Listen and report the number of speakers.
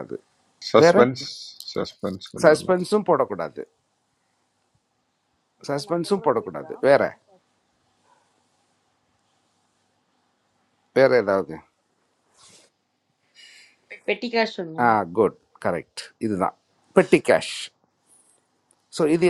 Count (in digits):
3